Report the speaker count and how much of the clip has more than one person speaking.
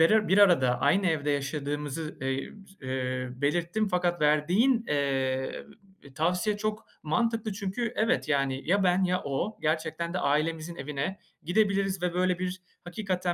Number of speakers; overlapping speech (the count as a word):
one, no overlap